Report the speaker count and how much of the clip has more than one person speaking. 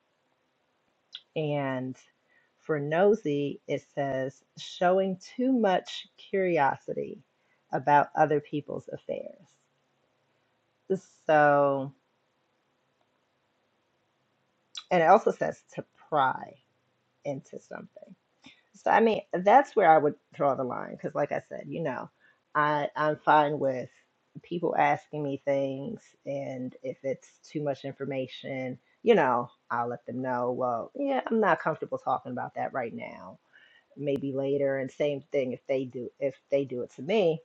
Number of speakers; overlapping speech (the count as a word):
one, no overlap